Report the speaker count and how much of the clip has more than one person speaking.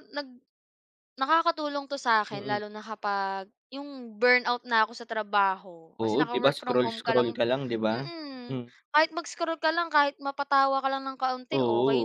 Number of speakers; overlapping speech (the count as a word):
two, about 20%